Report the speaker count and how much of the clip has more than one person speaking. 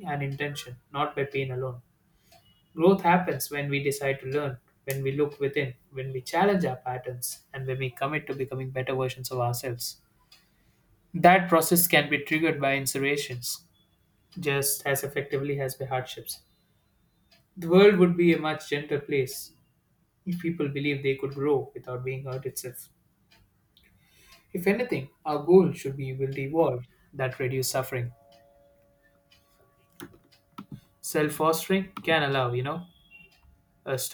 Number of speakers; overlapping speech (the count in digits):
1, no overlap